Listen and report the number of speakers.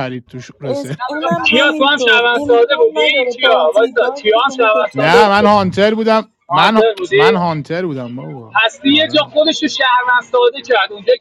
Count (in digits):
3